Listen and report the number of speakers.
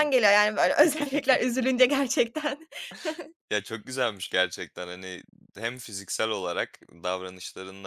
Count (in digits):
2